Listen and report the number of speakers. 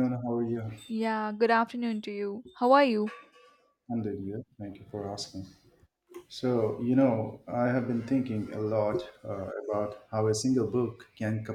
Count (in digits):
2